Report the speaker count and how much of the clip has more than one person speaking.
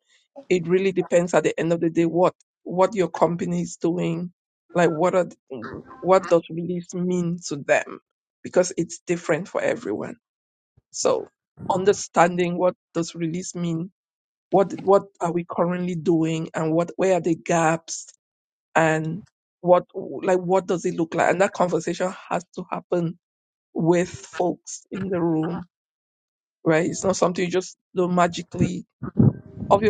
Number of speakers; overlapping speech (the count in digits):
1, no overlap